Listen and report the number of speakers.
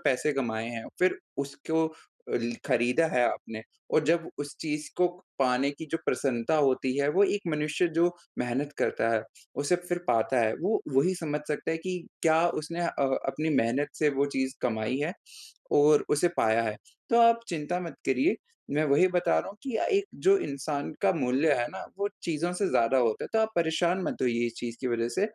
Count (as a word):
one